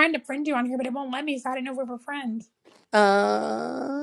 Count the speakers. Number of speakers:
2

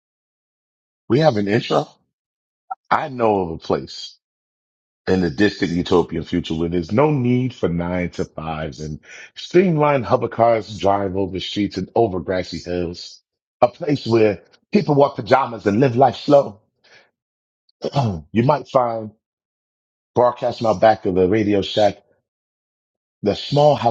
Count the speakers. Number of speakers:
1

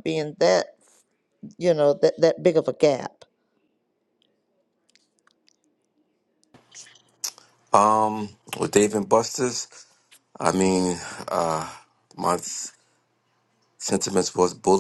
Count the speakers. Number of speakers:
2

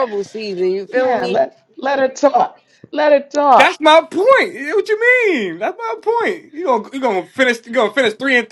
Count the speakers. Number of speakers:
3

